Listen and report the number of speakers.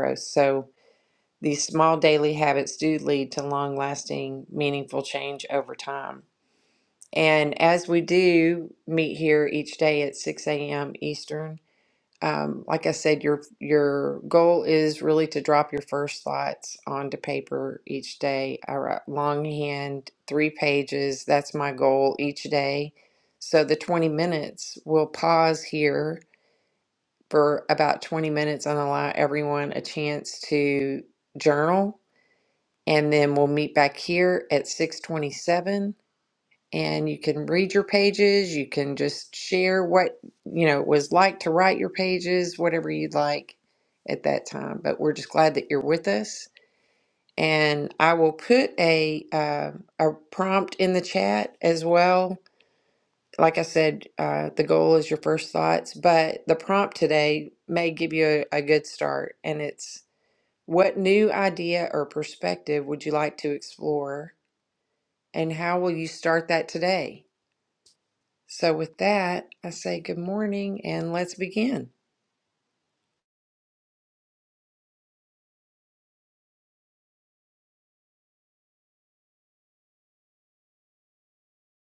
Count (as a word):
one